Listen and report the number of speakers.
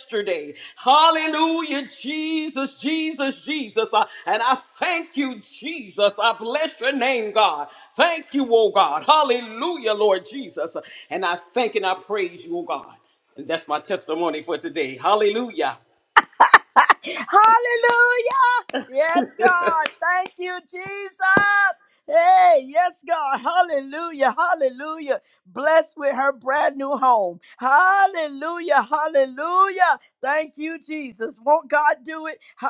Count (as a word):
two